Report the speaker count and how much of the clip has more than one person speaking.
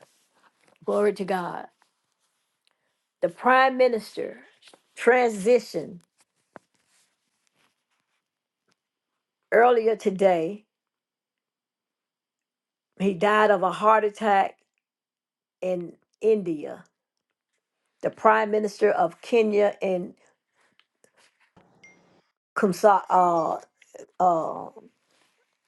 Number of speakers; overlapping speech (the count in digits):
1, no overlap